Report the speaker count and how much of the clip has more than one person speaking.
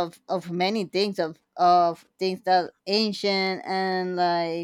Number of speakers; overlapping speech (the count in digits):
1, no overlap